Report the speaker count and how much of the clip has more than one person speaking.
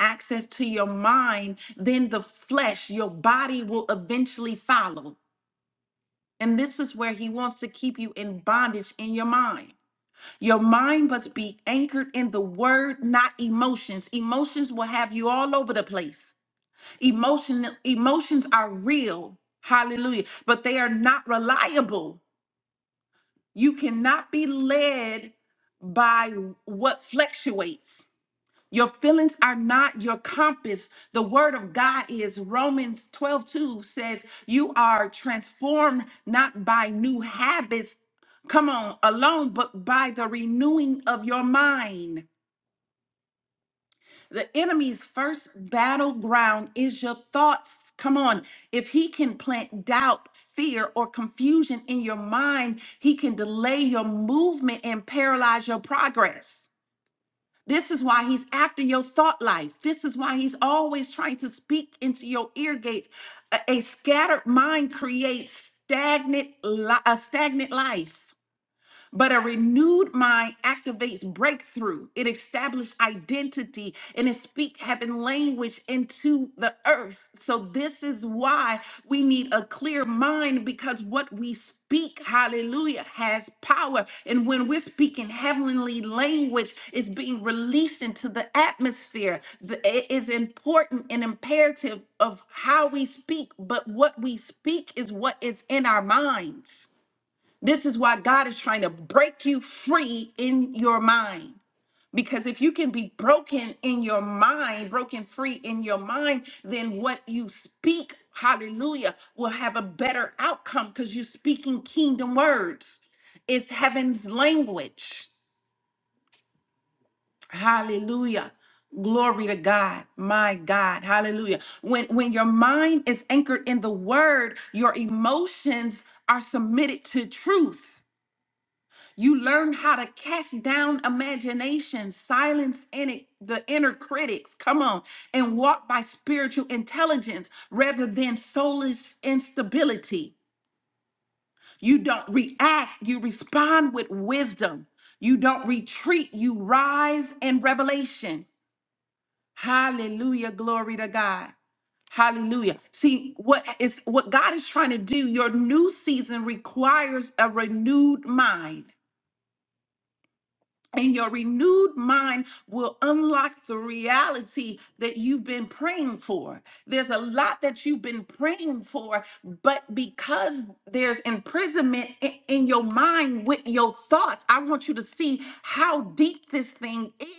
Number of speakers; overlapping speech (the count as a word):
one, no overlap